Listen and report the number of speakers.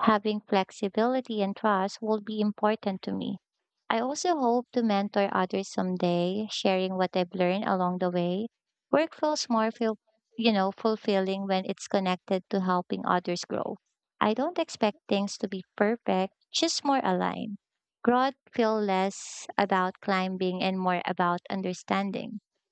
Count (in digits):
1